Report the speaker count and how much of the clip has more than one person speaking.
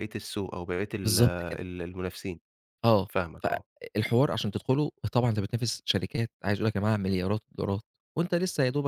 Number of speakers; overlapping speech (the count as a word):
two, about 8%